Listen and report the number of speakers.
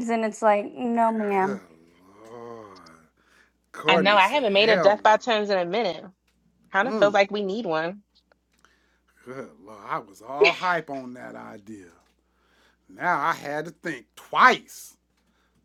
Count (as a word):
three